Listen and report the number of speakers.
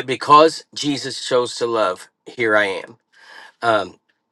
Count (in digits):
1